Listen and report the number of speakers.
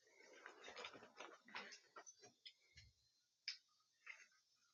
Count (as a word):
zero